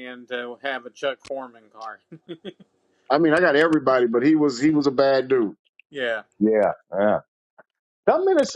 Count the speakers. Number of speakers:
3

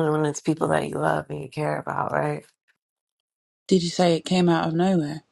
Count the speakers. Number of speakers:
2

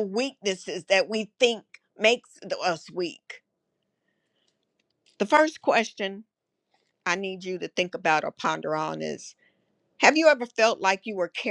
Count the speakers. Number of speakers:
1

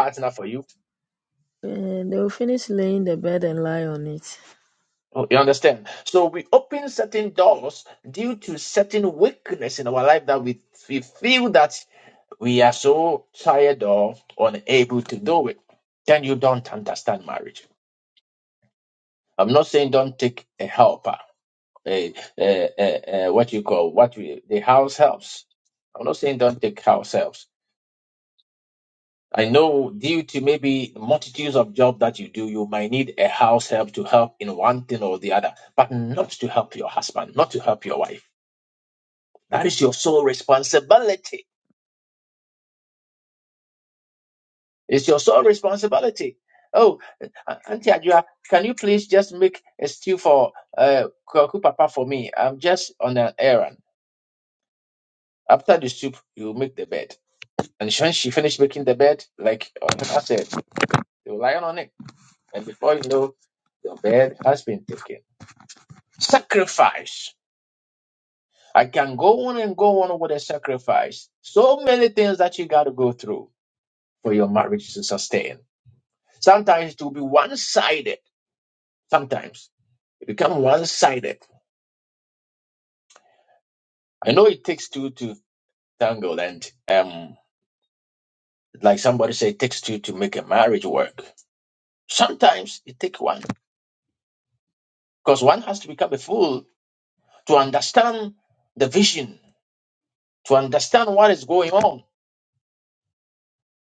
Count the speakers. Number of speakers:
2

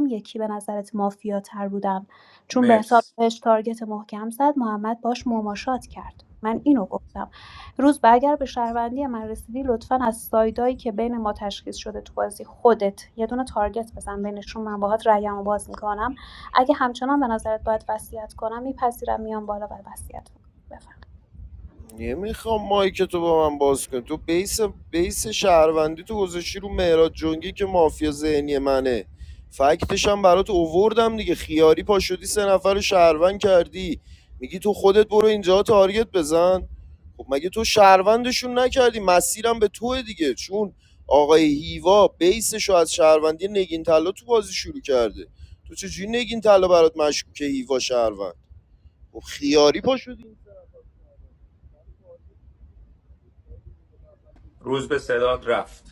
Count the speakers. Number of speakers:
3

